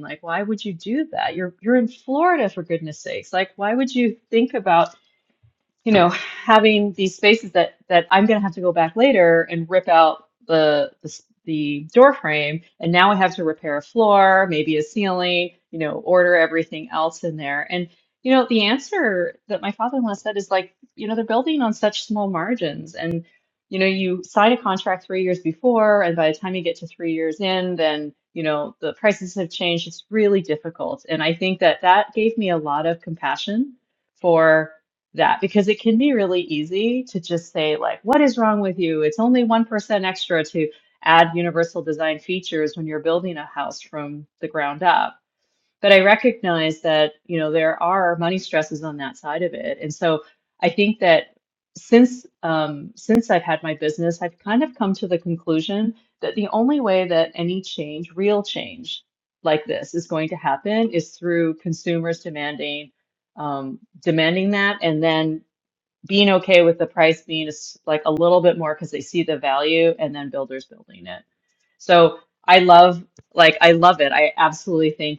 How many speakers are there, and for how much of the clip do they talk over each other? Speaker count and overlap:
1, no overlap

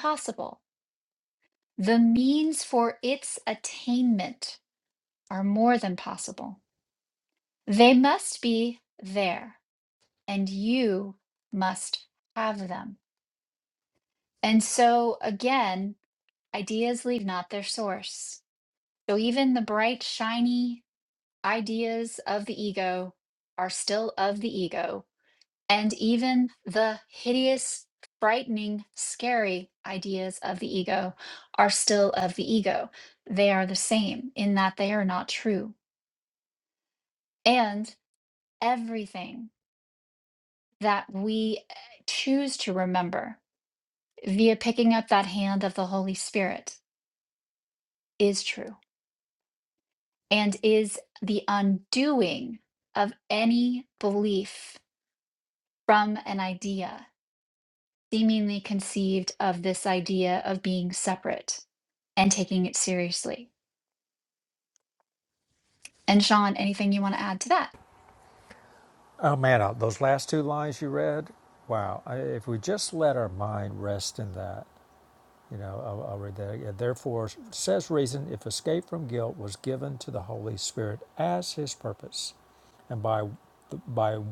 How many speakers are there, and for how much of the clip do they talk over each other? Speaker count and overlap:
2, no overlap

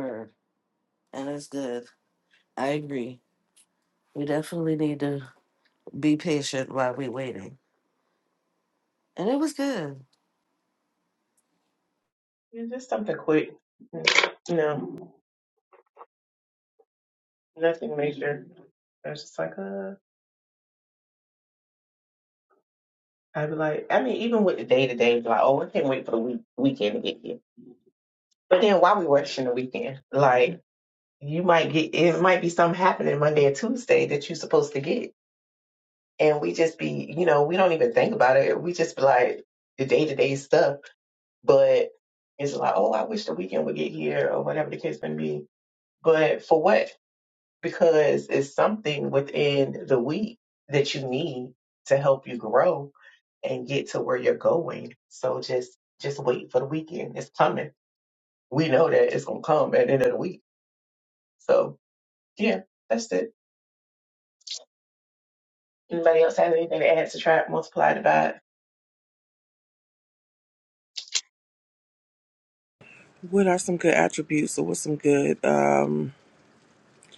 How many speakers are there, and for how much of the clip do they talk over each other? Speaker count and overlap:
3, no overlap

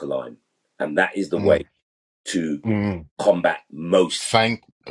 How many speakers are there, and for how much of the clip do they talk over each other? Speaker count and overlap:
2, about 6%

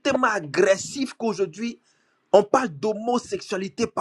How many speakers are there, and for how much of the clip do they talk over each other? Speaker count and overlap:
1, no overlap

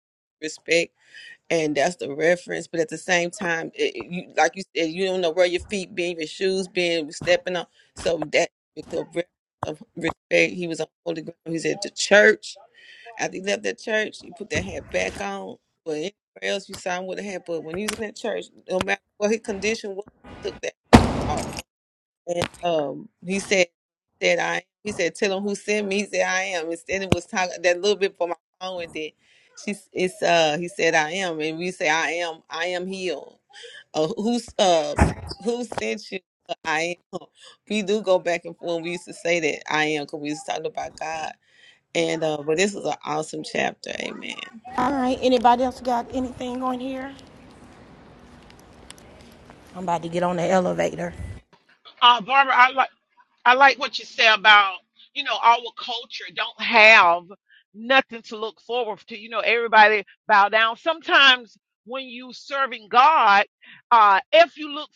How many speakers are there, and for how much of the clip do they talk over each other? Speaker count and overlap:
3, no overlap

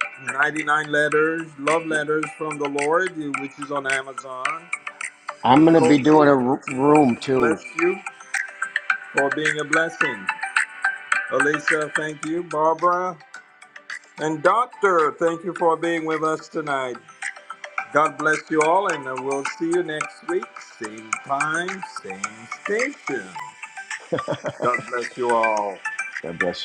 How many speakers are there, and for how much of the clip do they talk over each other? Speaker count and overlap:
2, about 7%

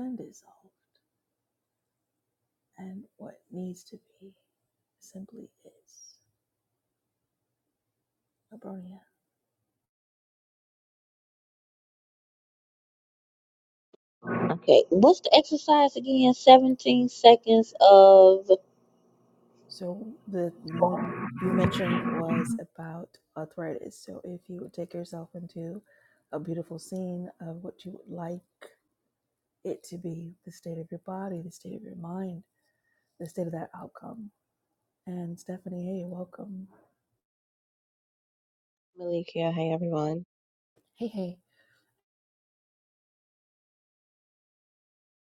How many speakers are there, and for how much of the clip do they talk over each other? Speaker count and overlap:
3, no overlap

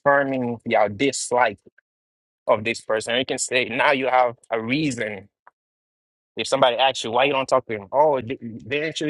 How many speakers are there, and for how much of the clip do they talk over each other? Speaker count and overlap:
1, no overlap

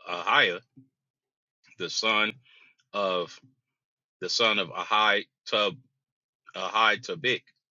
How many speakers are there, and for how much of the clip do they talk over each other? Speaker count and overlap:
1, no overlap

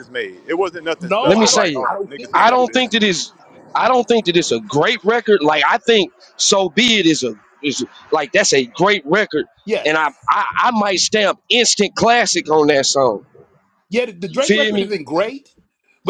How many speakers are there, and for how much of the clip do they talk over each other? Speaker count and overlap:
3, about 15%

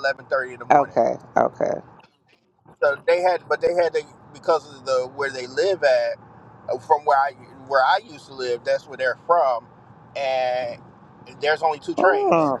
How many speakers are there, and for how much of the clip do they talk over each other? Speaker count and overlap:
2, about 5%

